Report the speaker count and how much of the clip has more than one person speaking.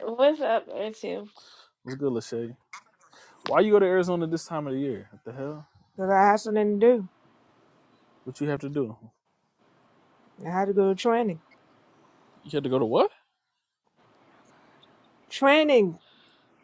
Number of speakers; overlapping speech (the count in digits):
3, no overlap